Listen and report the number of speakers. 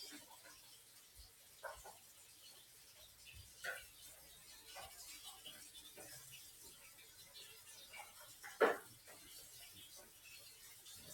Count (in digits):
0